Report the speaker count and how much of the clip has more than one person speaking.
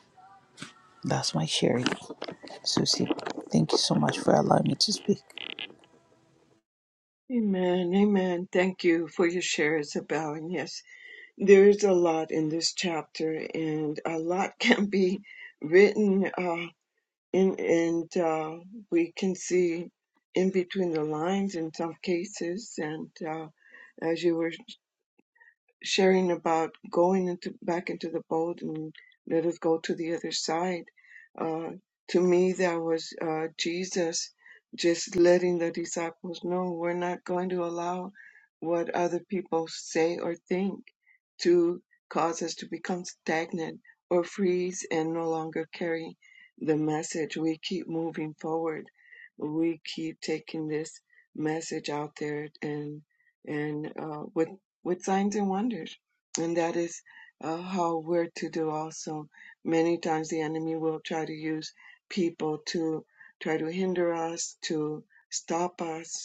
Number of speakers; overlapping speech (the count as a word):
two, no overlap